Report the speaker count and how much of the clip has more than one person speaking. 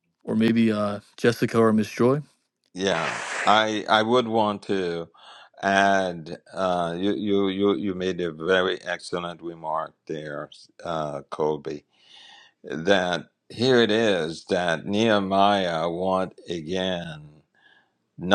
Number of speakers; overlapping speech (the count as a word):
two, no overlap